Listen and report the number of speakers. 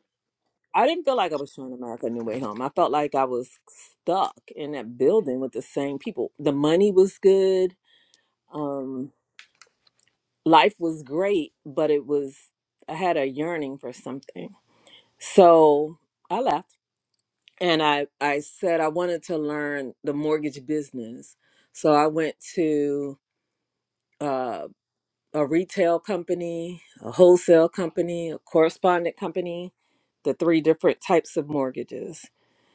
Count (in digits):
1